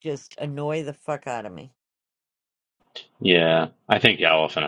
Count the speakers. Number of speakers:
2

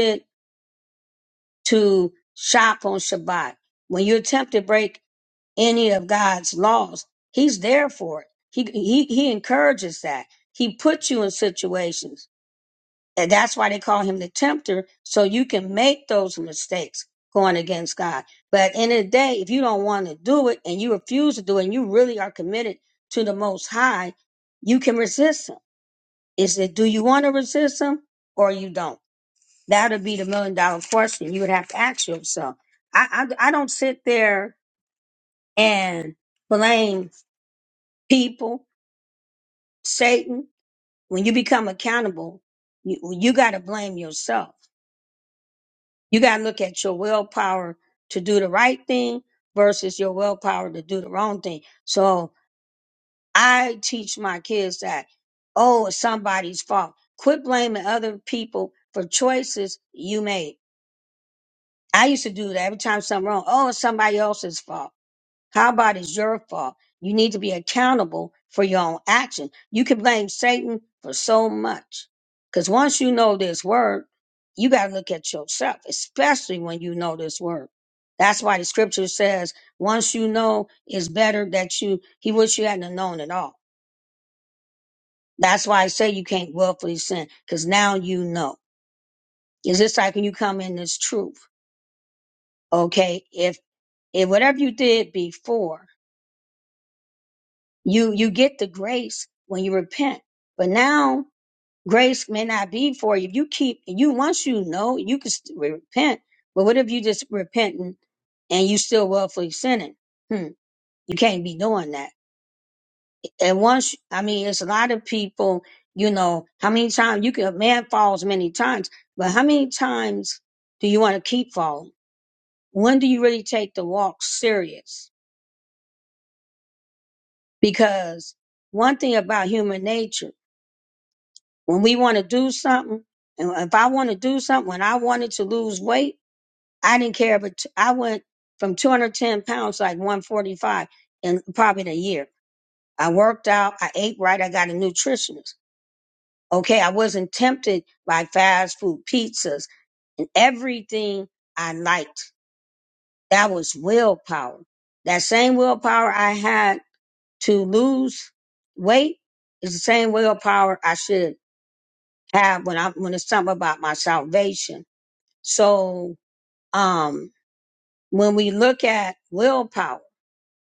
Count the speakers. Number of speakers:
1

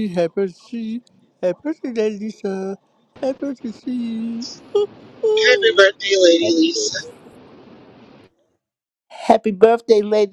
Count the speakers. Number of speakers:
3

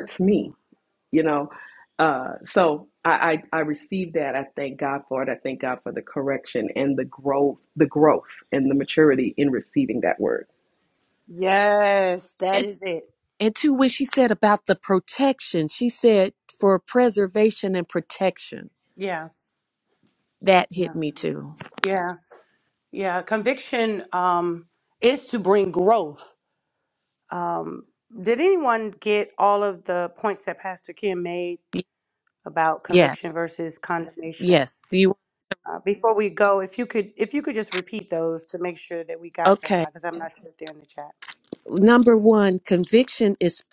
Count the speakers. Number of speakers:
3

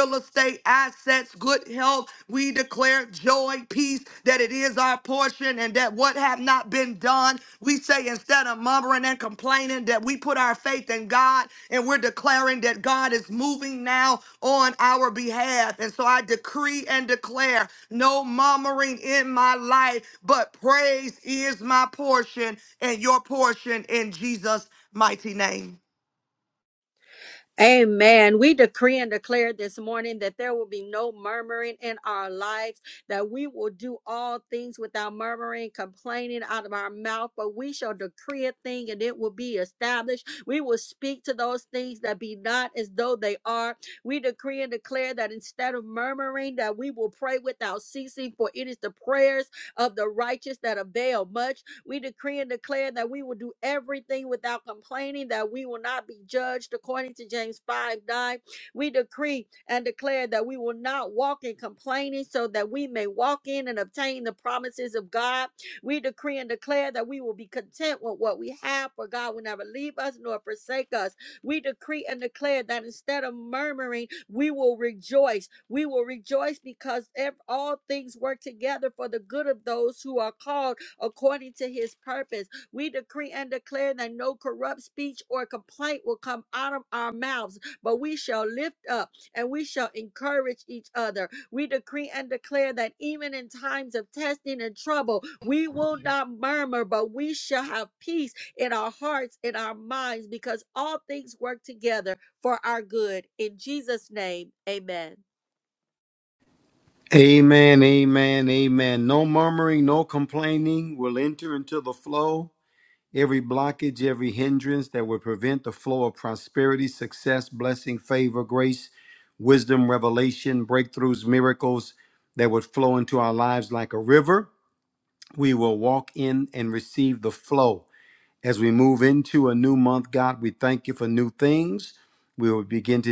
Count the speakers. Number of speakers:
3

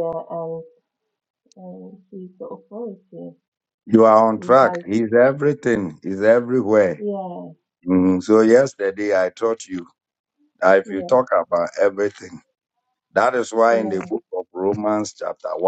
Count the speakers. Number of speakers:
2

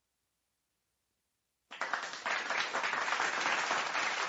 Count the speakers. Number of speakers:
0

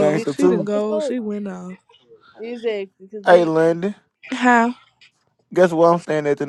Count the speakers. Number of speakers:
3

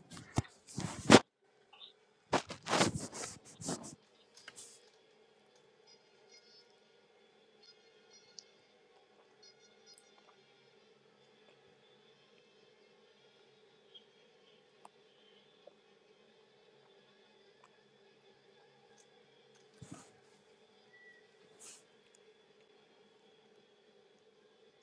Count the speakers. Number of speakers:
0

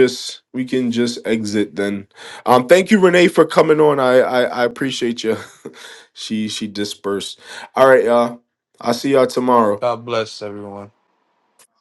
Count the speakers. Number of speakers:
2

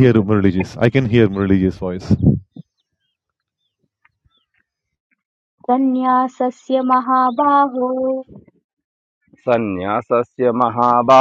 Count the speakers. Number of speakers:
3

